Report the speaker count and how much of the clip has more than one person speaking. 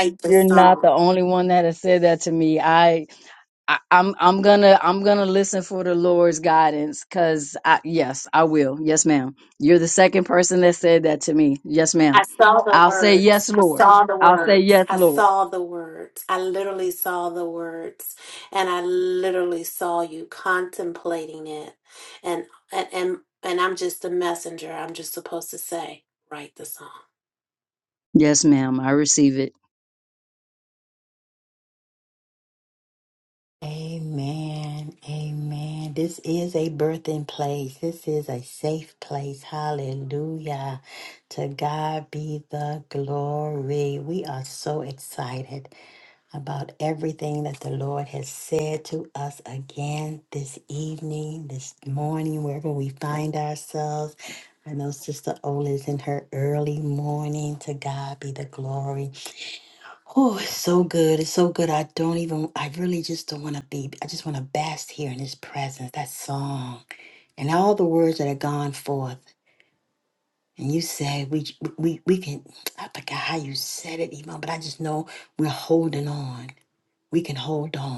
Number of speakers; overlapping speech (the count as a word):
three, about 4%